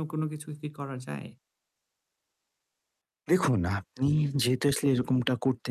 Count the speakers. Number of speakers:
2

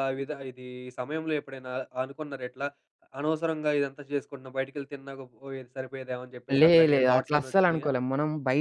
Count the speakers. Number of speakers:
2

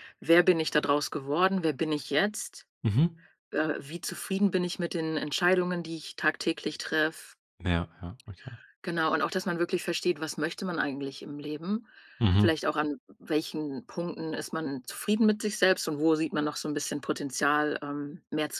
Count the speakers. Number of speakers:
2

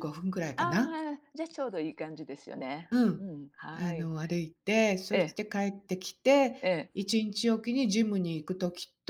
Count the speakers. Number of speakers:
2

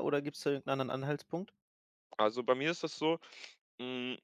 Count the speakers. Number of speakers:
2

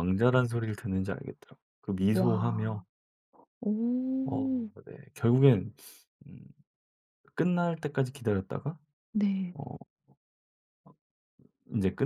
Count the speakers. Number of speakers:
2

